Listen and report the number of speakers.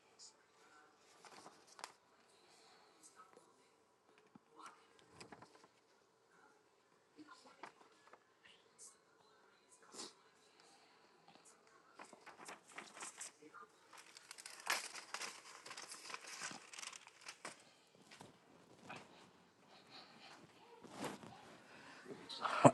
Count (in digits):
0